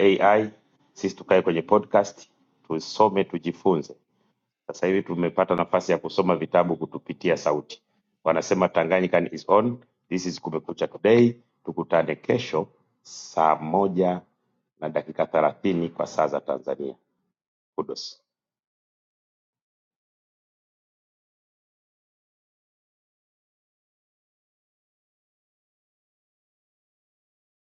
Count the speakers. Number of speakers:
one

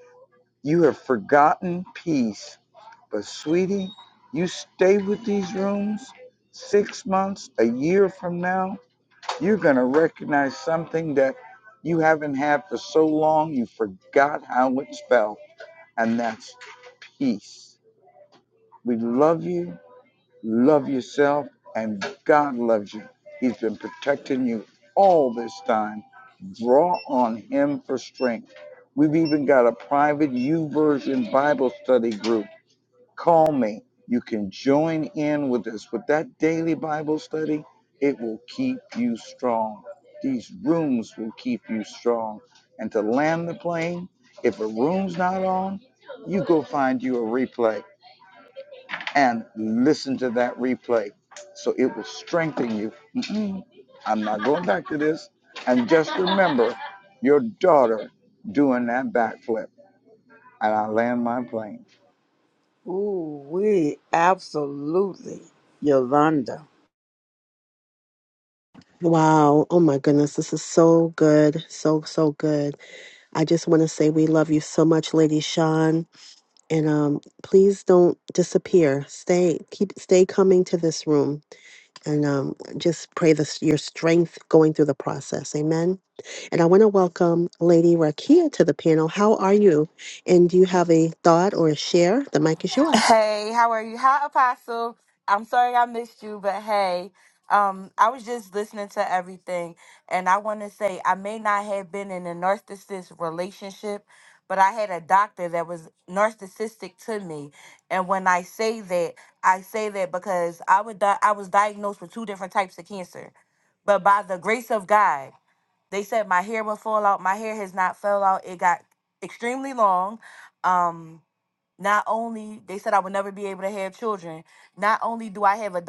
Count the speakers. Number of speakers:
four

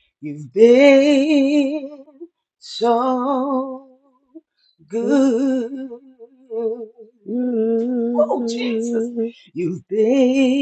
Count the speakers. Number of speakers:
two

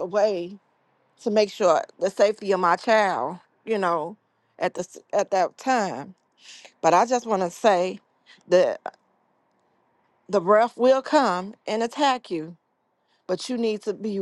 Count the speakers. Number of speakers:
one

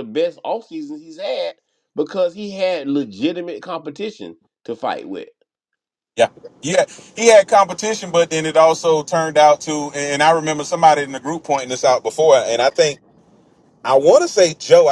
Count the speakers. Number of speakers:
two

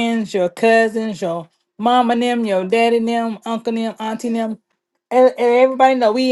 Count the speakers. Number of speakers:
one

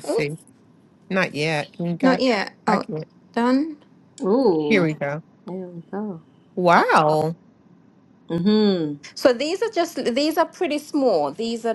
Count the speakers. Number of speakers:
three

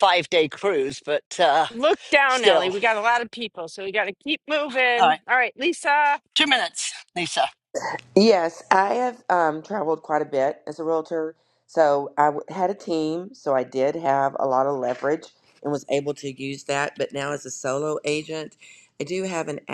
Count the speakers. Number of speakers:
three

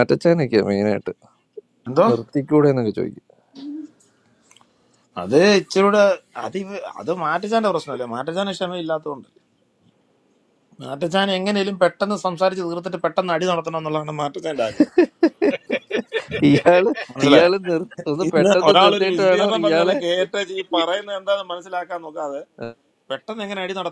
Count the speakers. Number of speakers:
two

